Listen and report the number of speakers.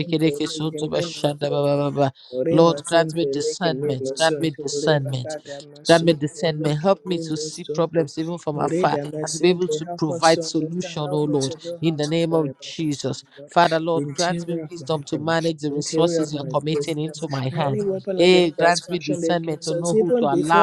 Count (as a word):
two